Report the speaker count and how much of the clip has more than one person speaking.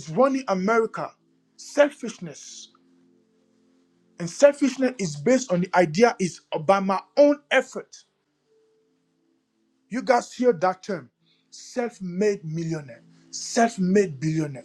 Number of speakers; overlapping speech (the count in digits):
1, no overlap